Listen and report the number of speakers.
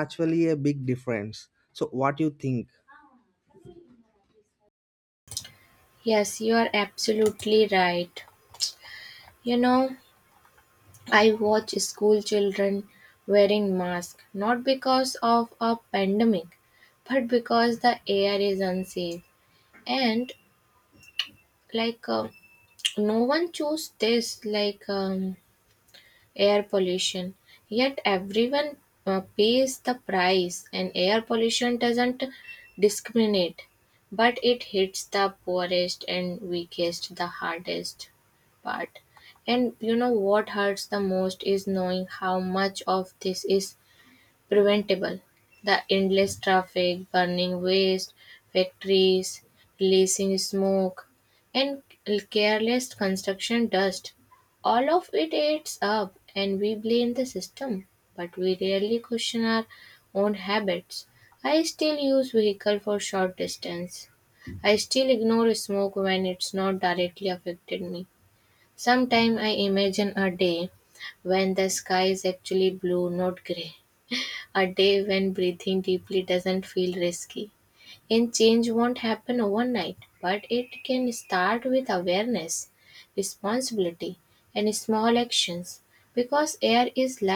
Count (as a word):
two